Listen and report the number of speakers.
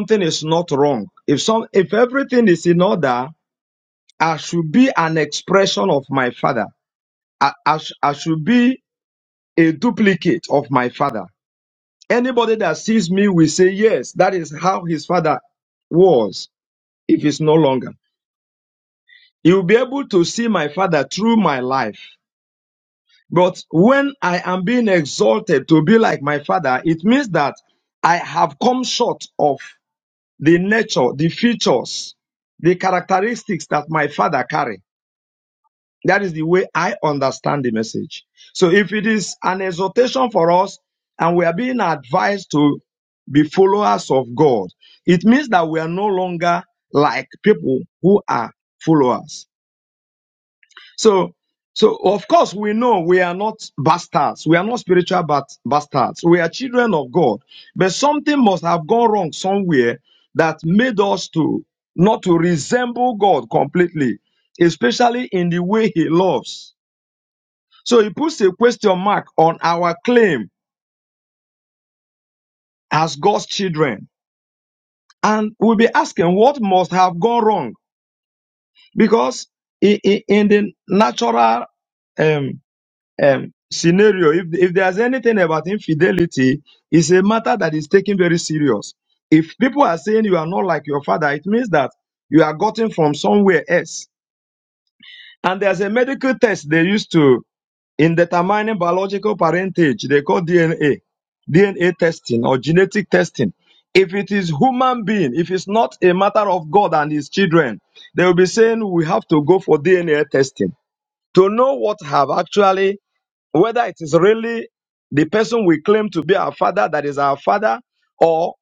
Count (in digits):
1